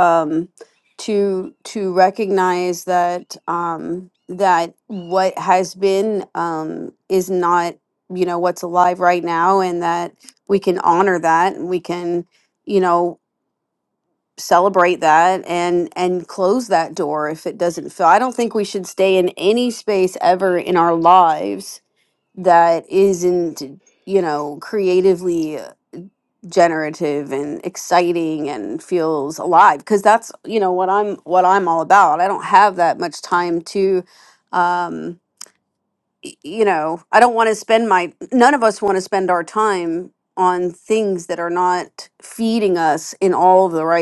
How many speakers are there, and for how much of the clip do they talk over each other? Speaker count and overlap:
one, no overlap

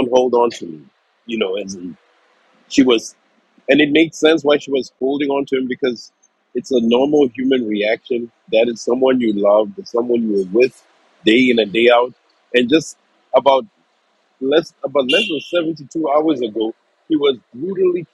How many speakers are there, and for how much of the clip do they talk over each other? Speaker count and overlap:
one, no overlap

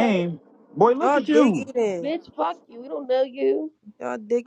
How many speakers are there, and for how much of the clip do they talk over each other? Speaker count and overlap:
three, about 19%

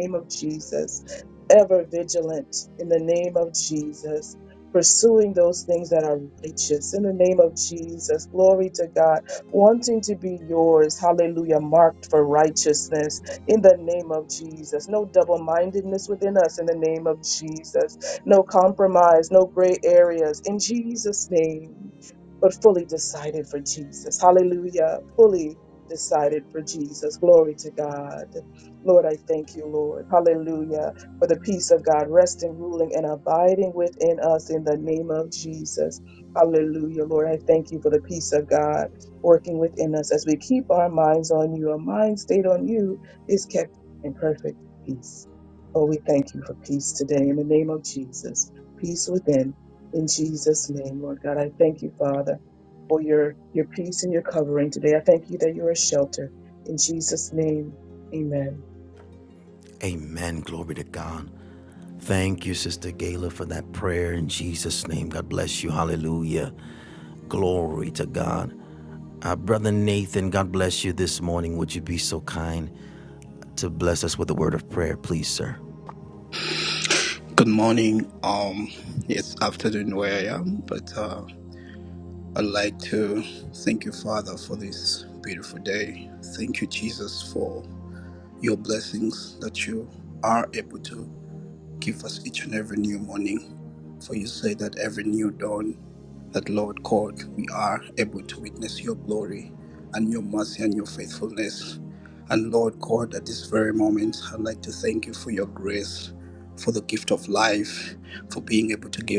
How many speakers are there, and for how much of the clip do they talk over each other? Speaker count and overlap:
three, no overlap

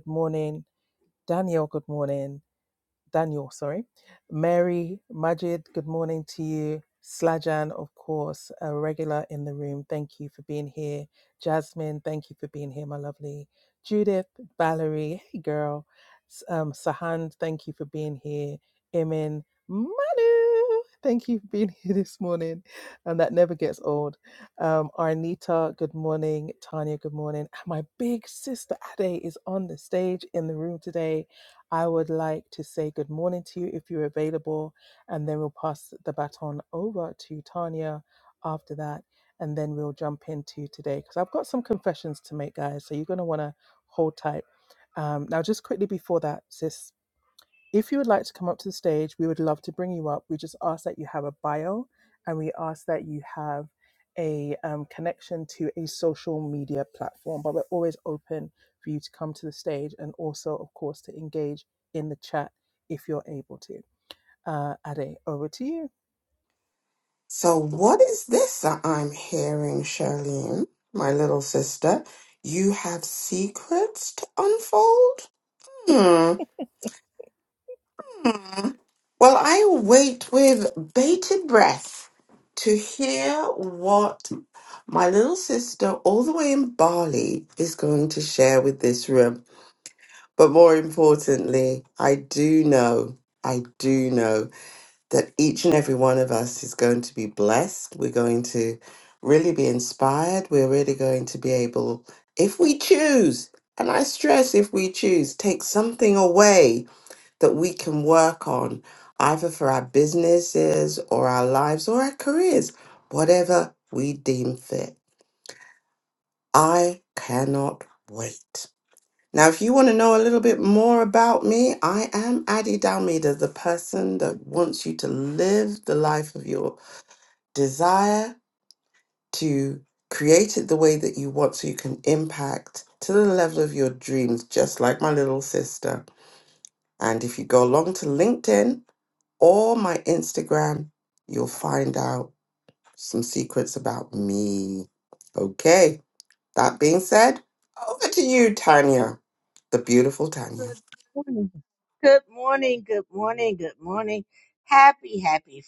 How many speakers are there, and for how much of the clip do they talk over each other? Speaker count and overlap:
three, under 1%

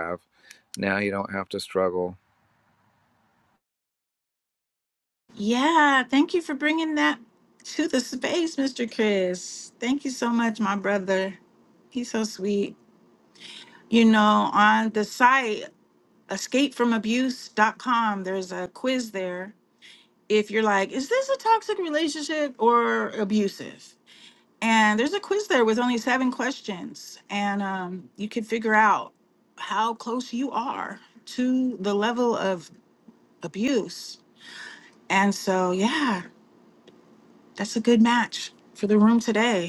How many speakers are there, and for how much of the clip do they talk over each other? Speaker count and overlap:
two, no overlap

